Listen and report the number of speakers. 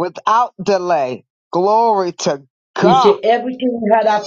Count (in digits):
2